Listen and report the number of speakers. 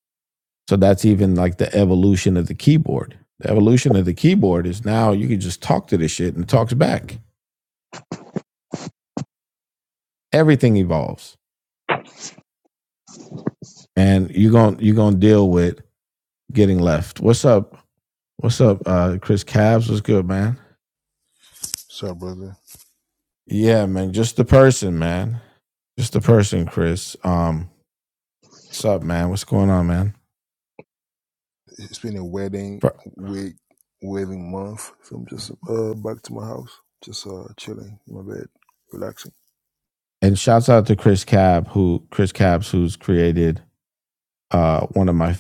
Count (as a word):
two